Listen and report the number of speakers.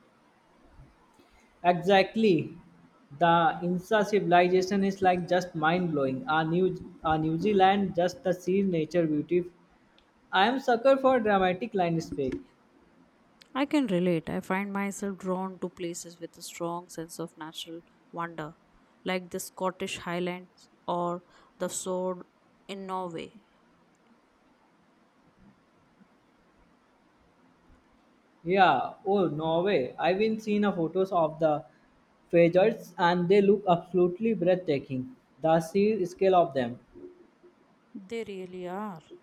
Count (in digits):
2